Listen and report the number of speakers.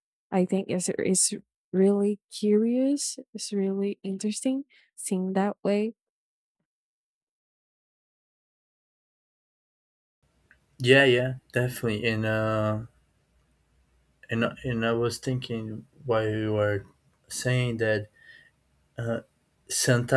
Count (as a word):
two